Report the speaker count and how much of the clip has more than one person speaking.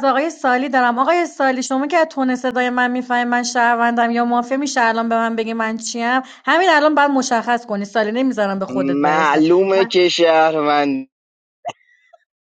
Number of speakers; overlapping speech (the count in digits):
2, about 7%